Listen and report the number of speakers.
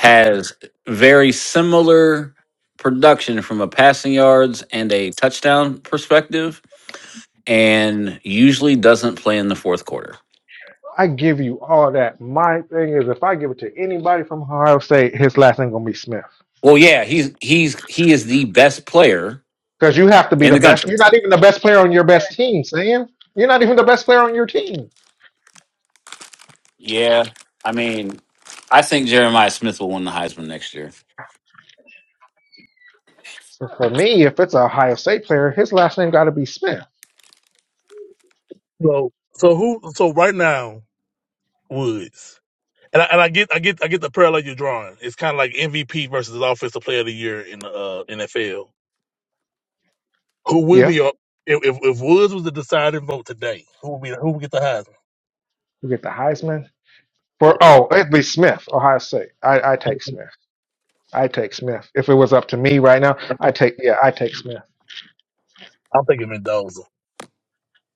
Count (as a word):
three